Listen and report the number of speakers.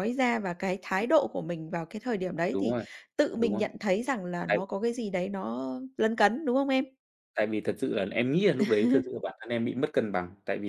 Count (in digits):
2